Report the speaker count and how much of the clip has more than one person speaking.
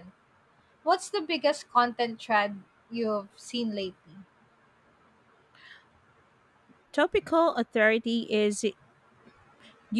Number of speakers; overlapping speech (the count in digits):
2, no overlap